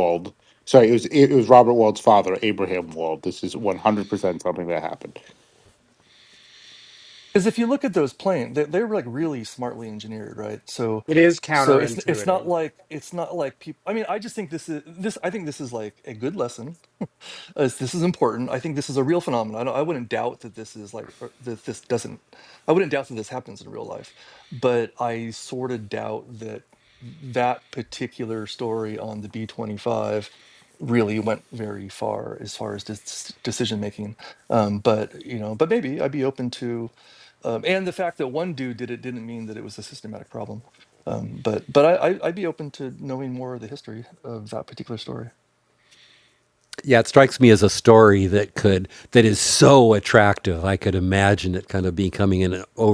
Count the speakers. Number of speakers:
4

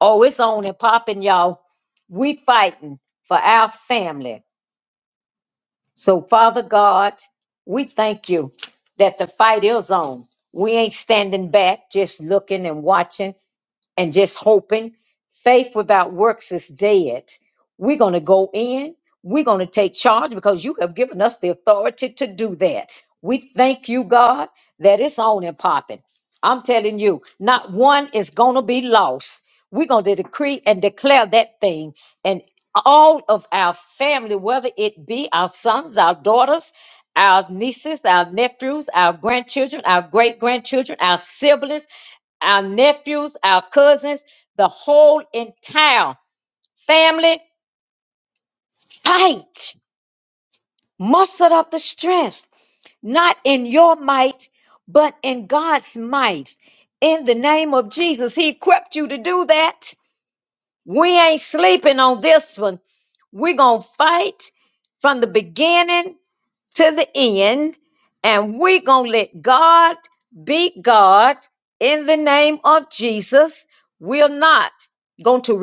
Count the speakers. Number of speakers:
1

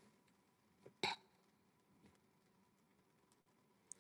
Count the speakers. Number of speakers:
0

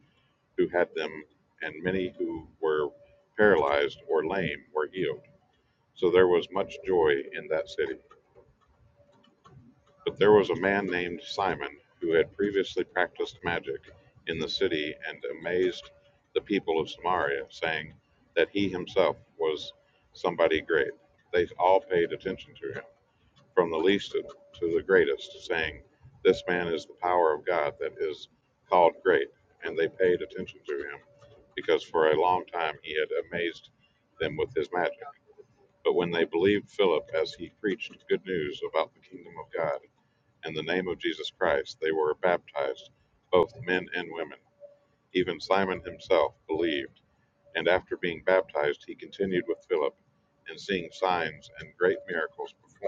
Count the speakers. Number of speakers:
1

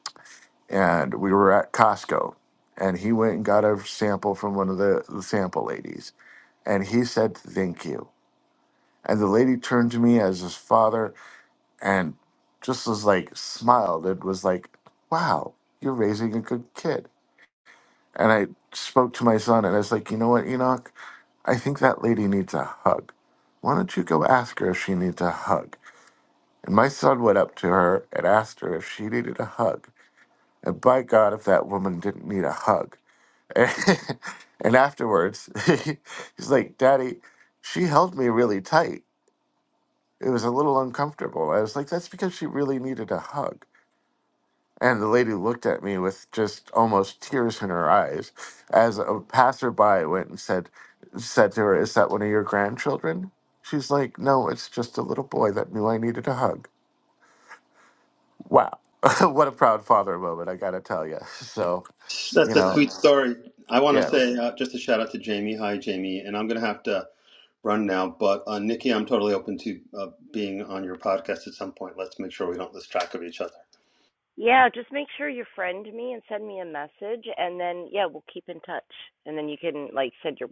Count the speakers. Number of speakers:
3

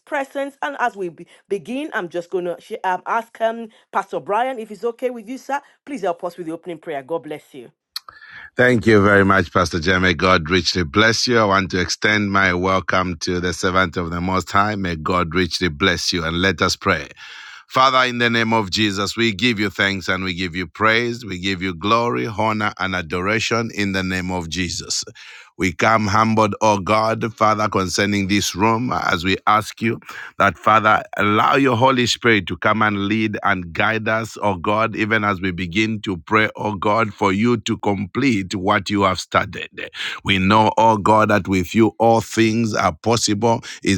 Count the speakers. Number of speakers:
2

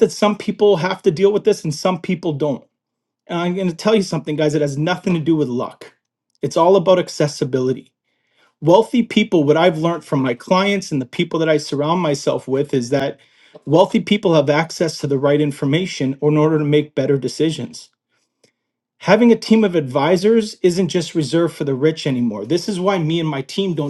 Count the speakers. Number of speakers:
1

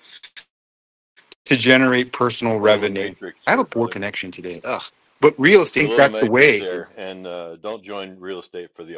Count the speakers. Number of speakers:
2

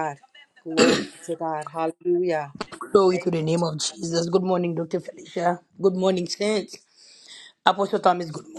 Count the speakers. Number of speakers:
2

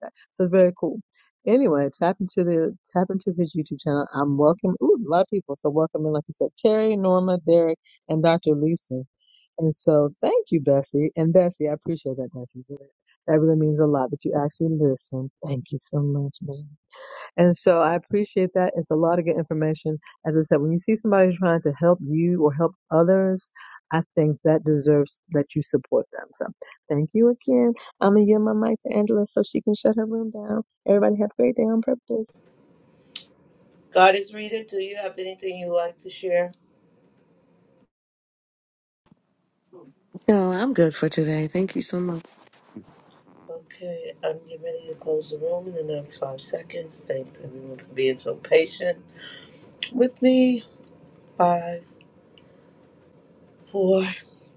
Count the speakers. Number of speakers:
3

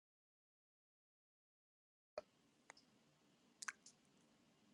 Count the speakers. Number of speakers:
0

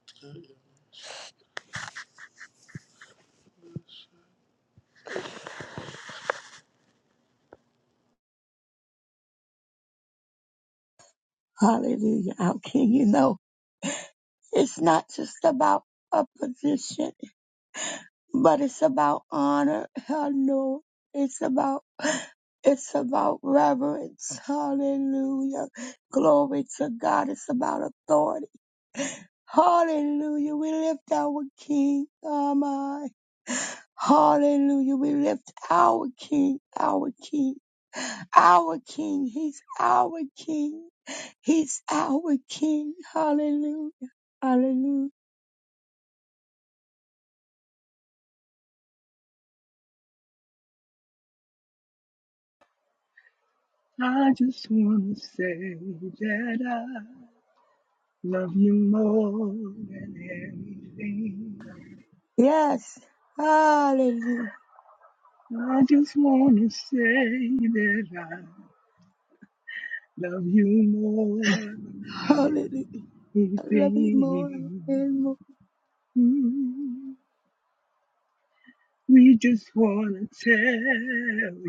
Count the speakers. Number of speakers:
2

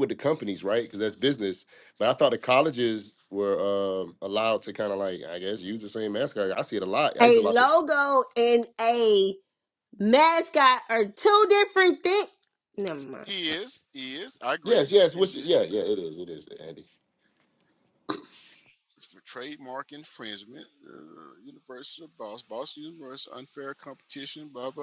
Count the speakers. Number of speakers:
3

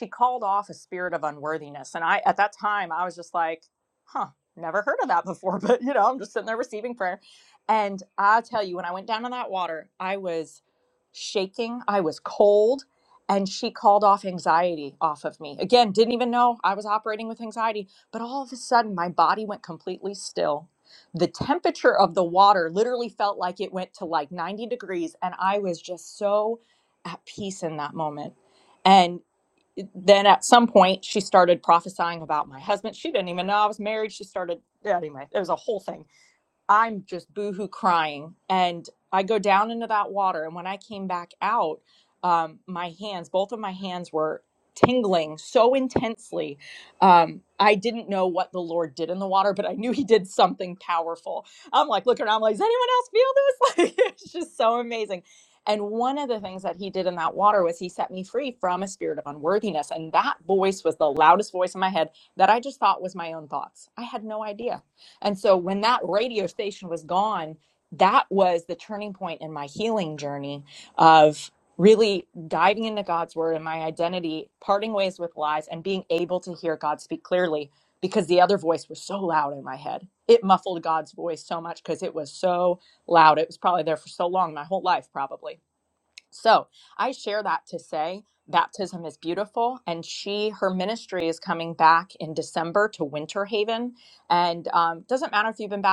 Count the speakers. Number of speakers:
1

